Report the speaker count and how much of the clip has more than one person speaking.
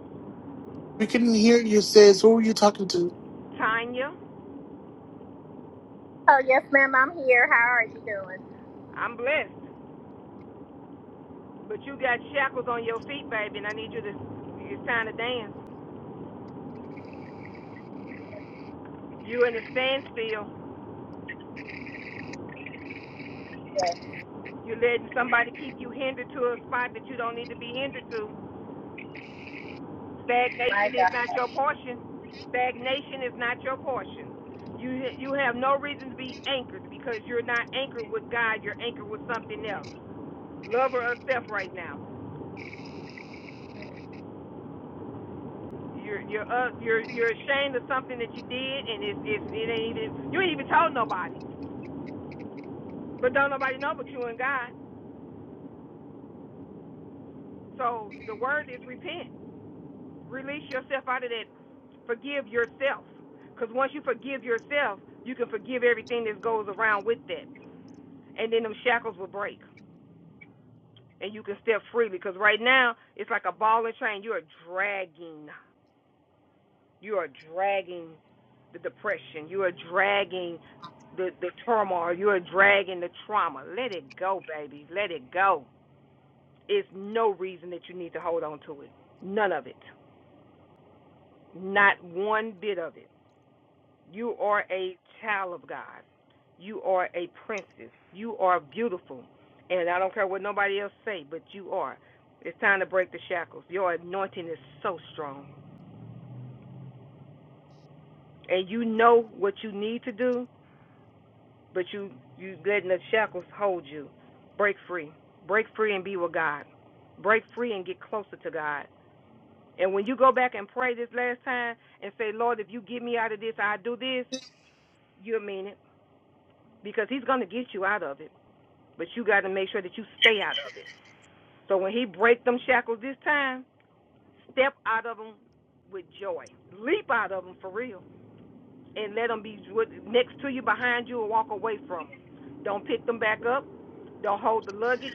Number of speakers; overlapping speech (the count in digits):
3, under 1%